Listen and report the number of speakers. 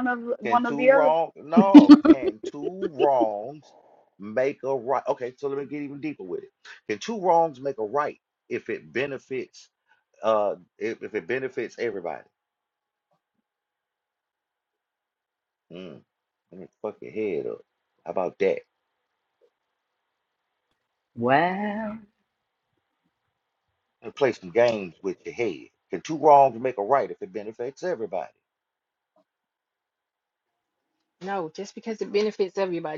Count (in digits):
3